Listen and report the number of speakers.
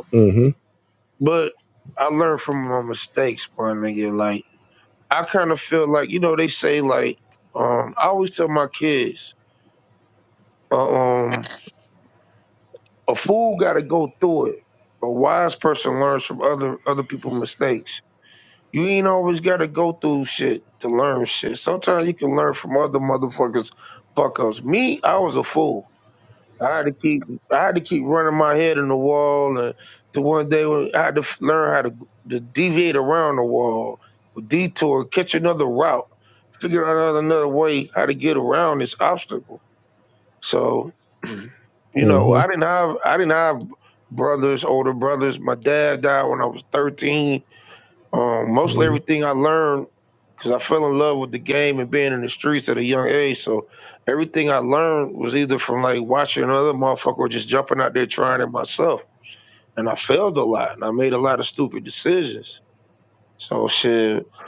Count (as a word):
two